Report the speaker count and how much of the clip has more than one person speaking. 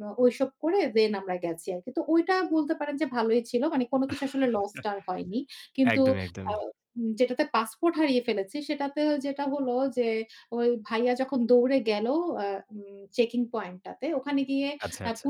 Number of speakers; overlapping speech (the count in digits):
2, about 4%